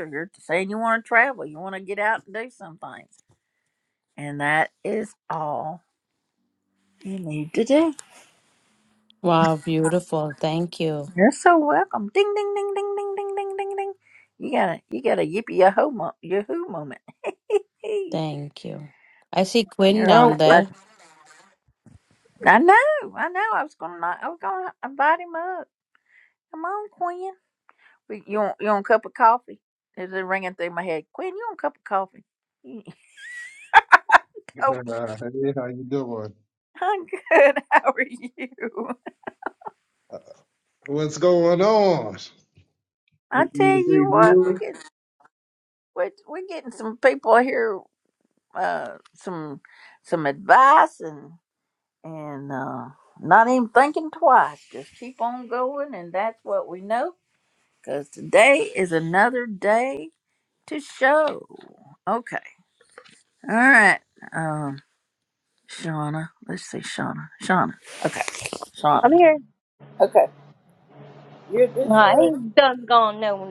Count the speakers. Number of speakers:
four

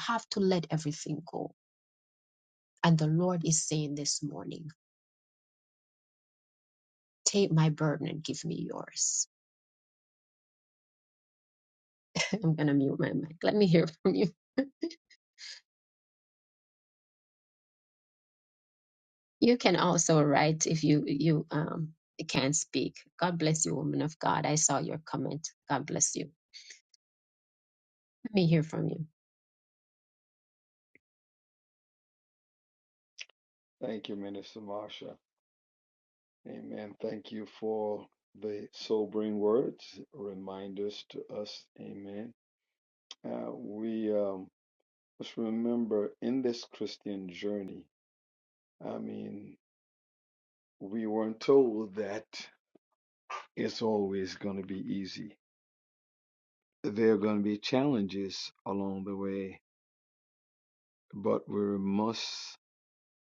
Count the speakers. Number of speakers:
two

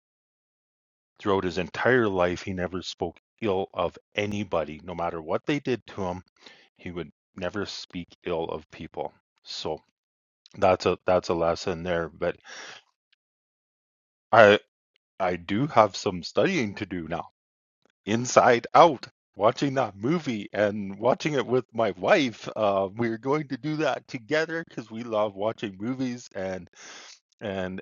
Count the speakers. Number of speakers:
one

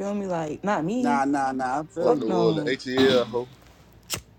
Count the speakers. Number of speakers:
three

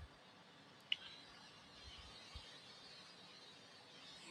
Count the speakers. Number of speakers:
zero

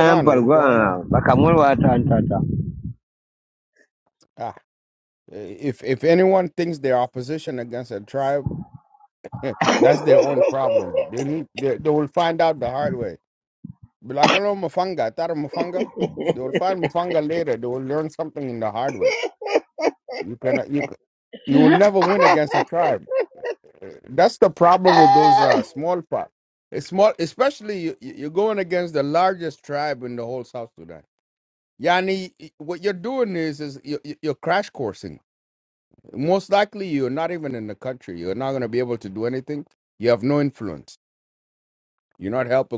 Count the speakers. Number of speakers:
two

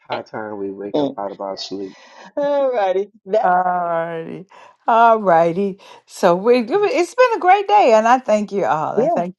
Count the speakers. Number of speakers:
three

